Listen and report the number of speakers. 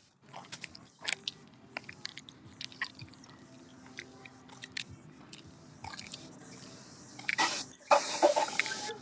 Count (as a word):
zero